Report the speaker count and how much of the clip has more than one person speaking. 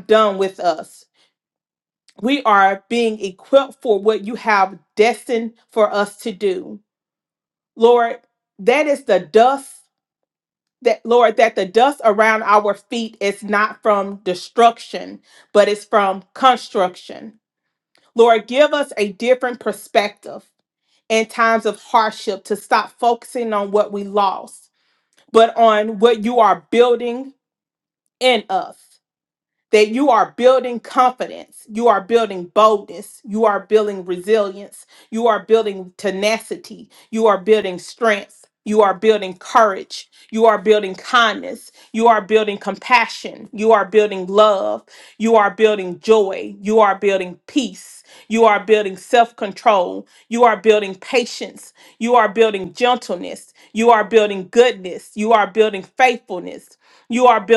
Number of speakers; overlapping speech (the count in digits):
1, no overlap